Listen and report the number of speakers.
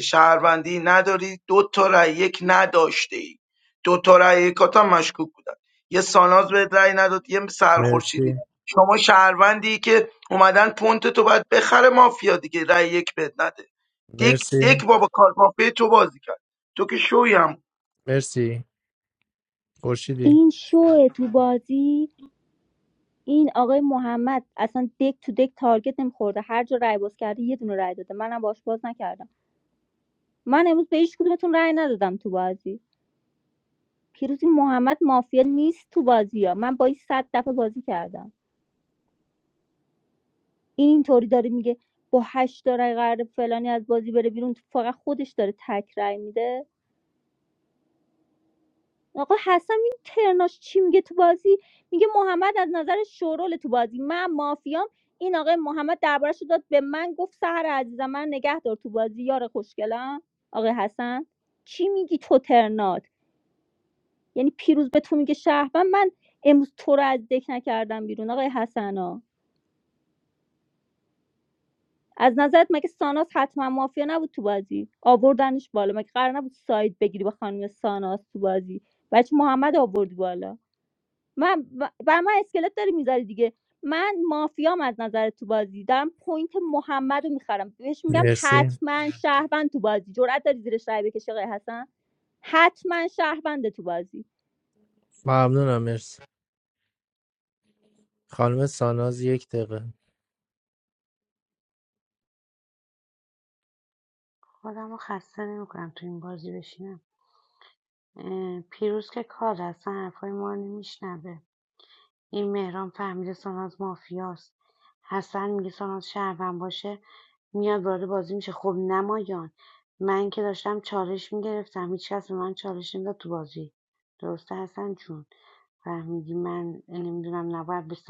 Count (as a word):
four